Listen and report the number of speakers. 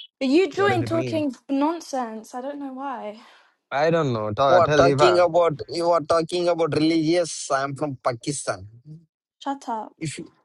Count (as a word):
three